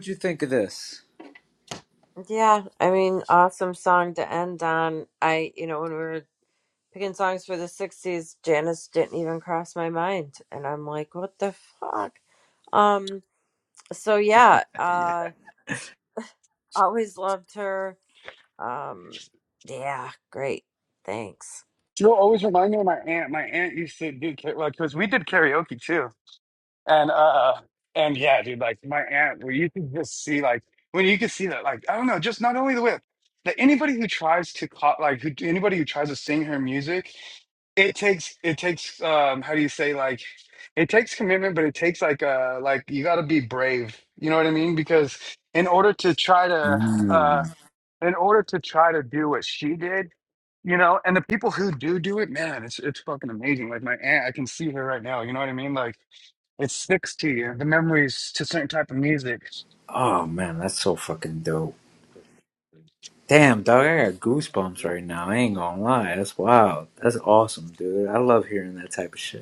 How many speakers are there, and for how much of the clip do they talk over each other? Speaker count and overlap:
three, about 1%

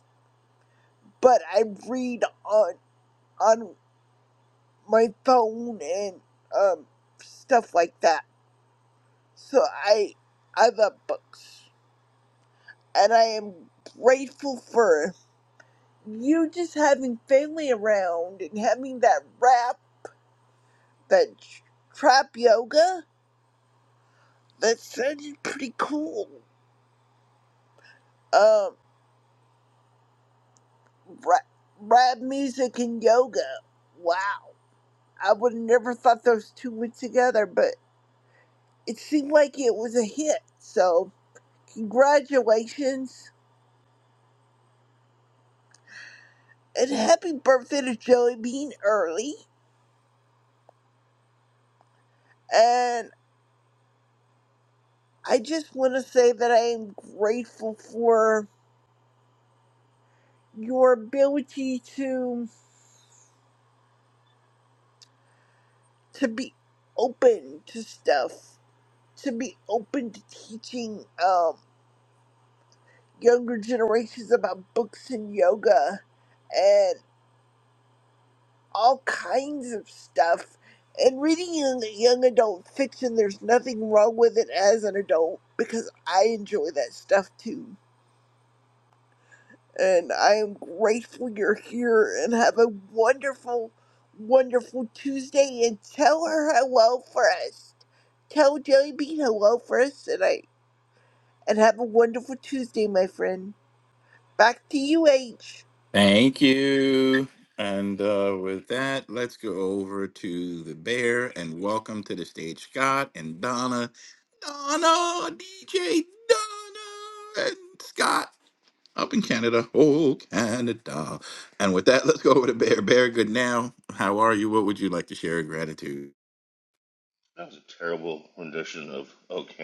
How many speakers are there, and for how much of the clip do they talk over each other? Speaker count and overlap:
three, no overlap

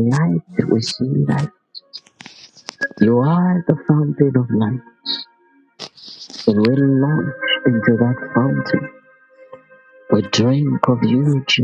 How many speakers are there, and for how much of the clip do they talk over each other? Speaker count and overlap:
one, no overlap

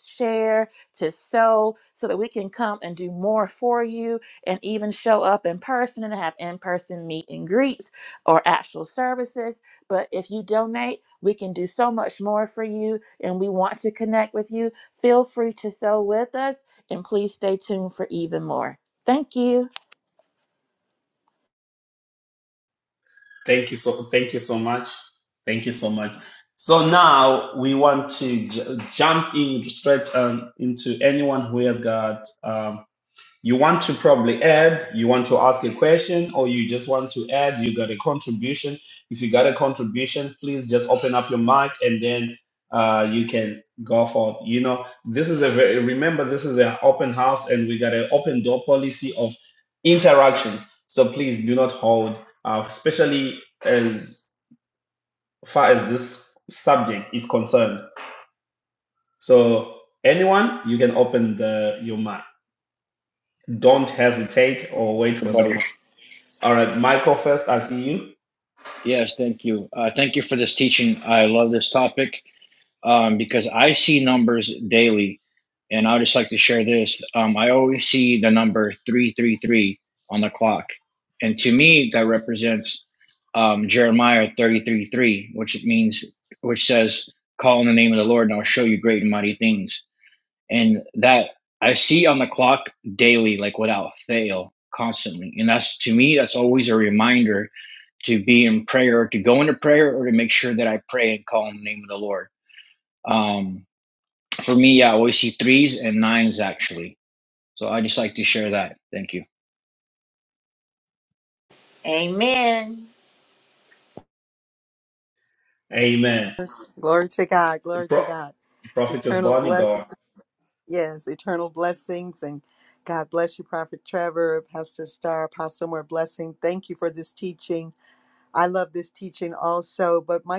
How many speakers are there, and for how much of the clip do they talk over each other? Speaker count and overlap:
four, about 1%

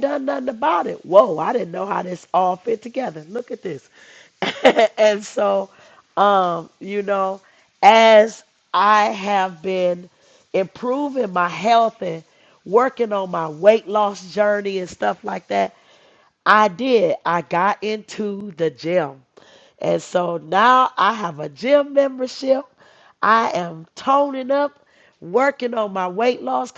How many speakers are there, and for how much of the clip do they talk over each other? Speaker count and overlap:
one, no overlap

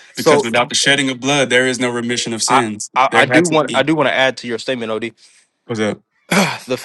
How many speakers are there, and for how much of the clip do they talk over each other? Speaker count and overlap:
two, about 19%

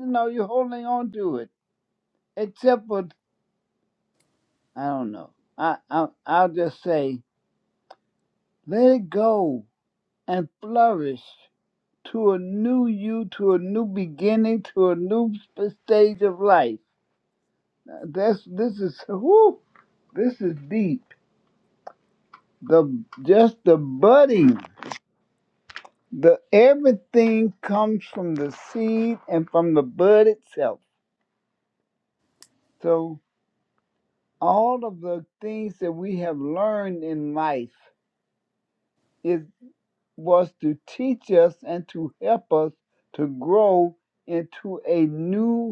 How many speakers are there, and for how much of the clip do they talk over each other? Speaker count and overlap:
one, no overlap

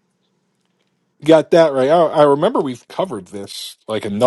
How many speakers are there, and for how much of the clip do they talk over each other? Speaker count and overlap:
one, no overlap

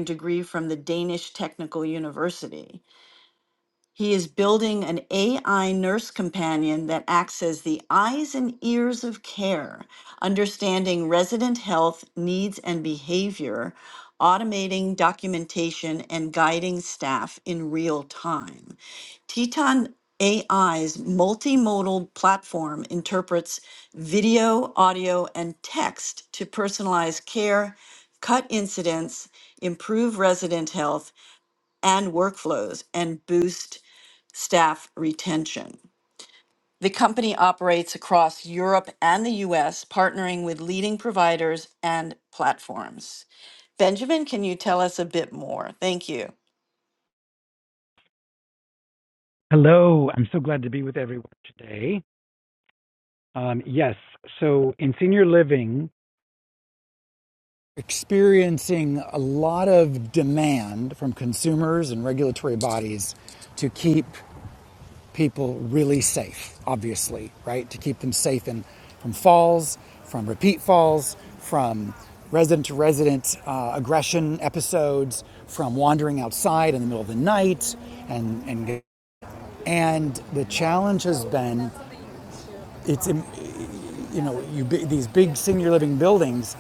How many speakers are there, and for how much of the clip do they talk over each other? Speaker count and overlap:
two, no overlap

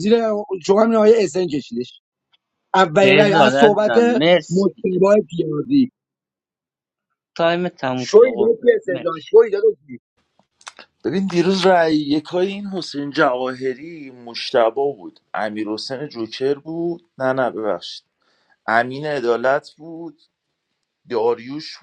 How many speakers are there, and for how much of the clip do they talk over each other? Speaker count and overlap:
three, about 10%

